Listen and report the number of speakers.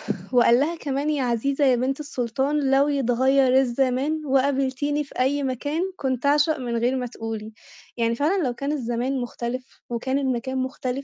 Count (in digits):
1